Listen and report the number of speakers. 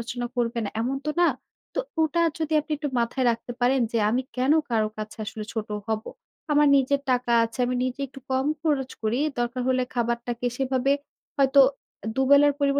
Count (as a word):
one